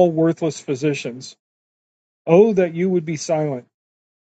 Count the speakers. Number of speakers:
1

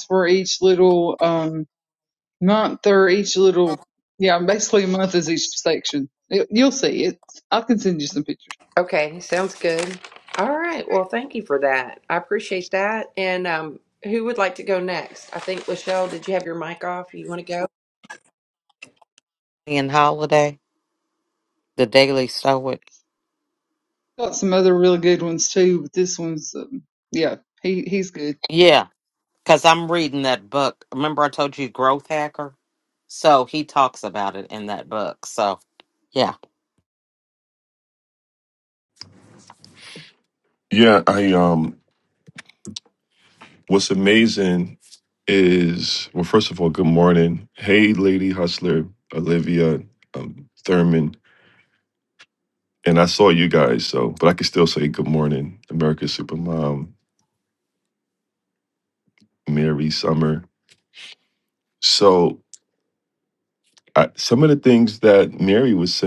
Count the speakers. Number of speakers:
4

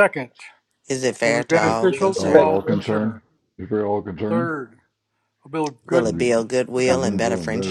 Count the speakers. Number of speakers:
3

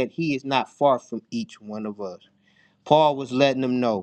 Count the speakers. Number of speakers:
1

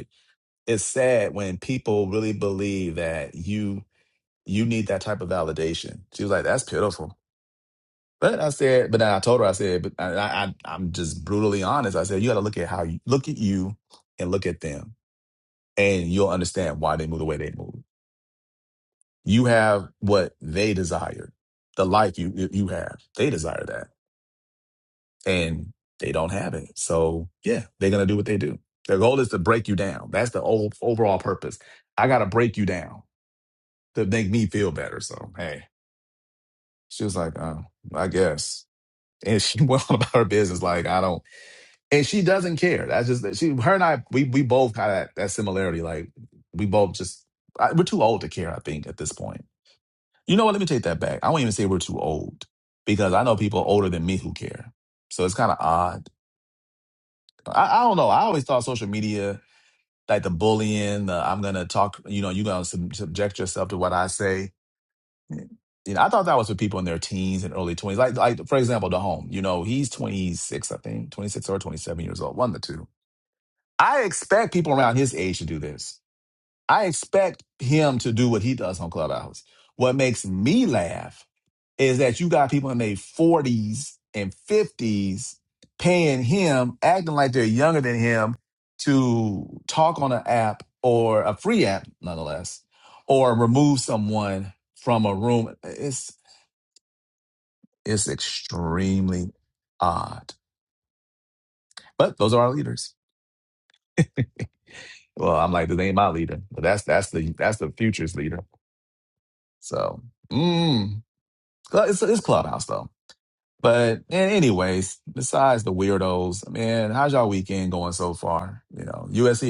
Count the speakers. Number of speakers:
1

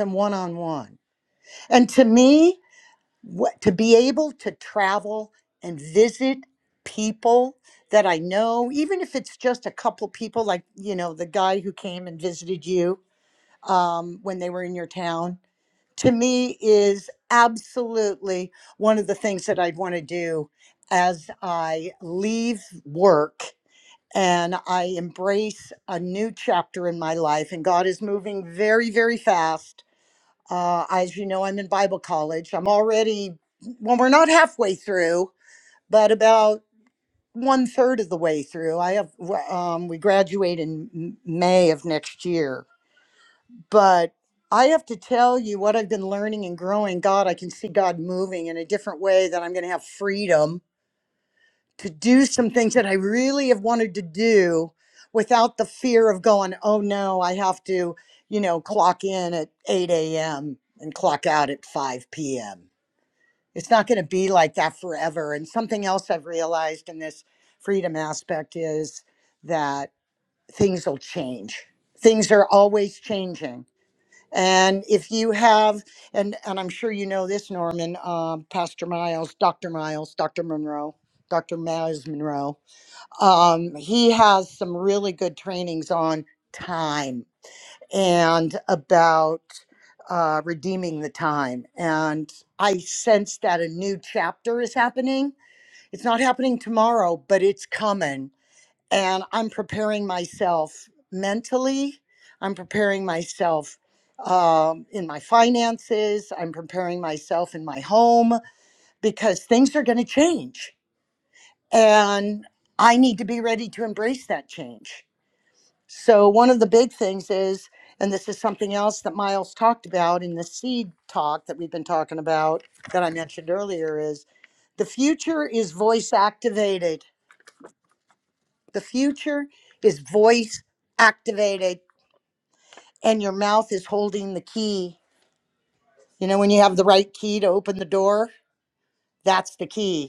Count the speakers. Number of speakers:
1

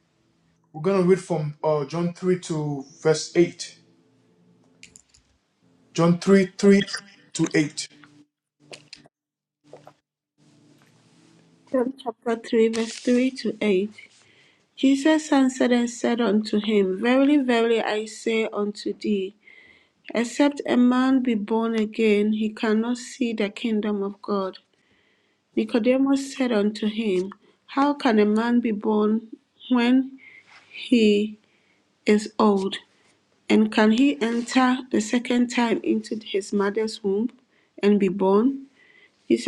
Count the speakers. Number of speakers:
2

